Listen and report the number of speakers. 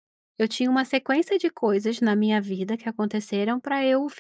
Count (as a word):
one